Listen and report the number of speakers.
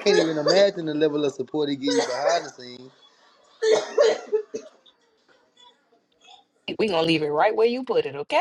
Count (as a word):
two